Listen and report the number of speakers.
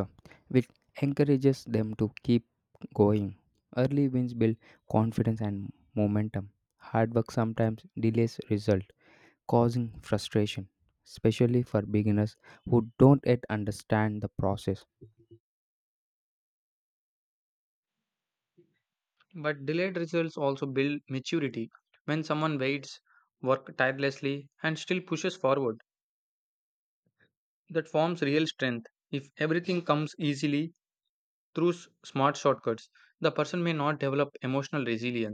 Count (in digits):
2